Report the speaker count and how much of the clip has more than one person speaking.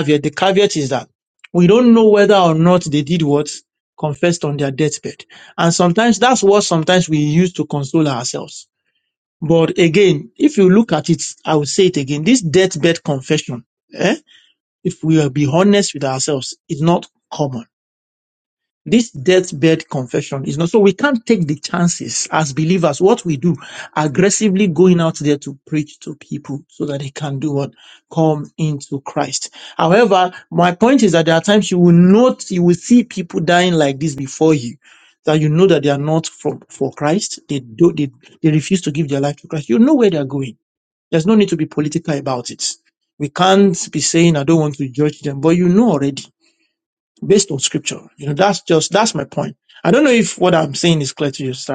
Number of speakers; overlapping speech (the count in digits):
1, no overlap